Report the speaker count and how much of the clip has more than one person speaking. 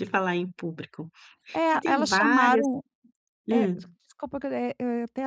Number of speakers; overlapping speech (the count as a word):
two, about 24%